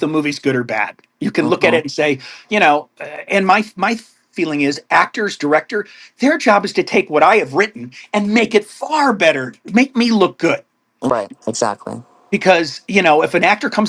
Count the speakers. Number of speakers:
two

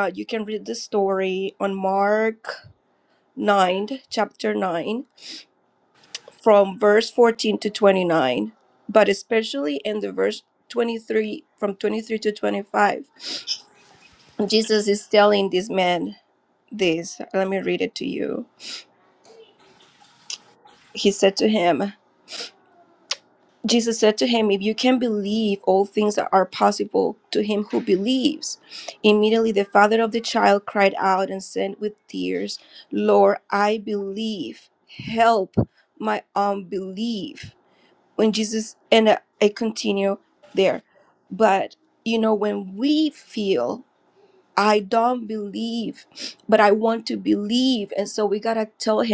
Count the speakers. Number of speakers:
one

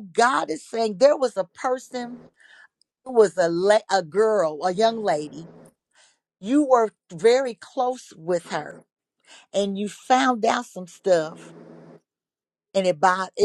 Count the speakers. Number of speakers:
one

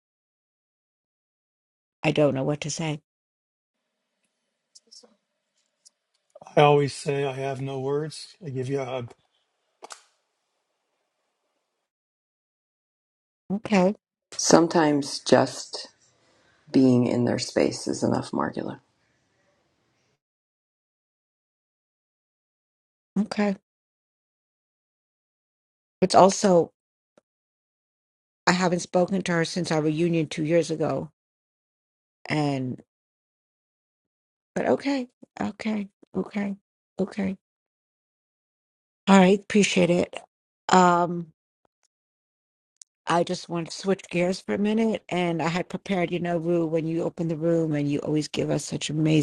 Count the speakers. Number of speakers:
three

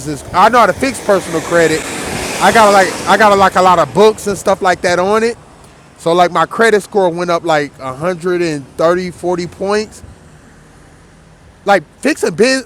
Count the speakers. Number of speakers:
one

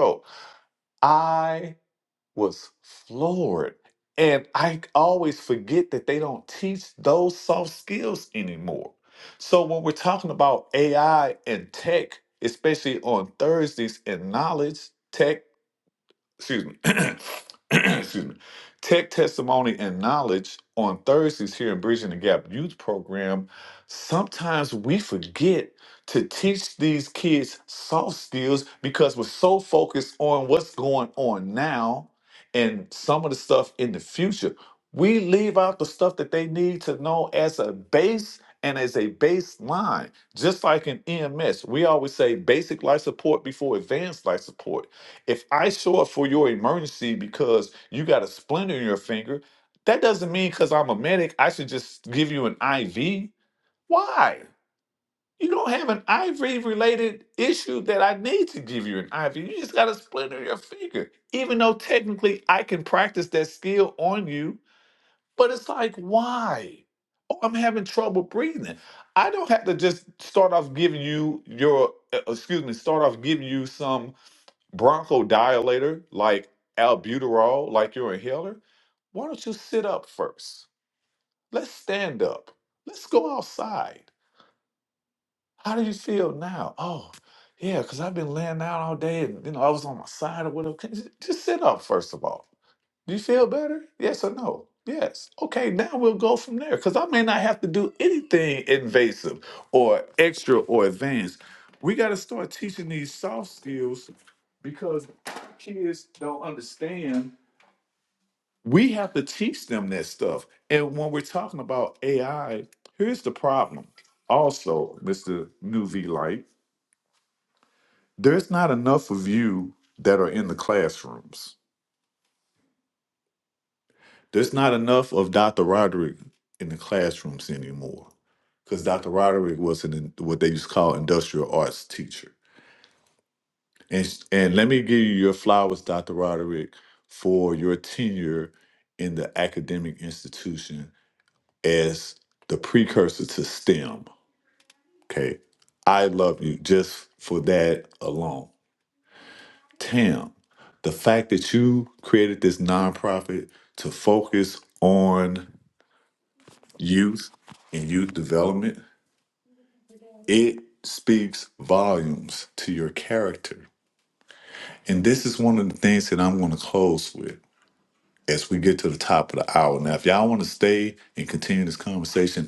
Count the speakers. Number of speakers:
one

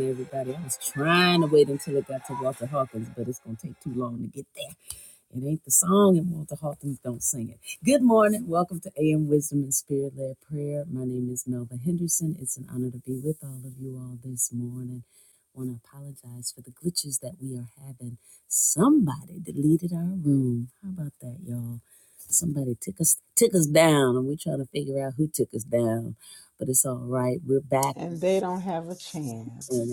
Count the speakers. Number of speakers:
two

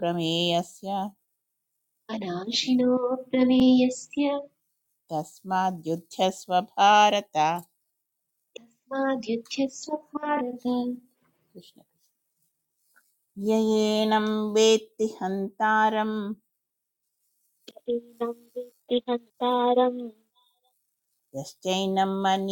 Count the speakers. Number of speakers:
three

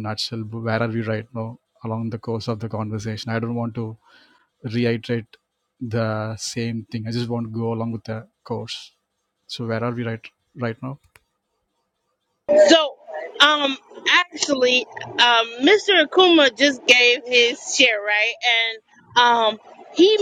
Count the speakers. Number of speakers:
two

